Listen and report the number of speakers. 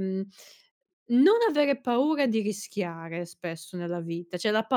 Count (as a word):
one